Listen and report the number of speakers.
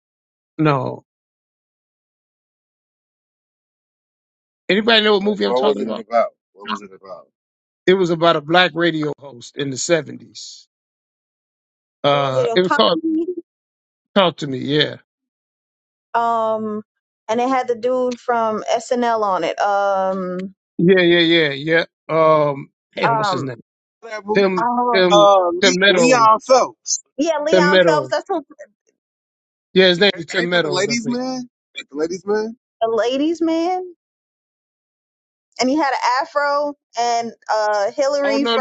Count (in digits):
4